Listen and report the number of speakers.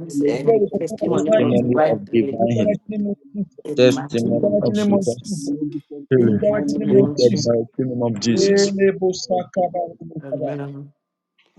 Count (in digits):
4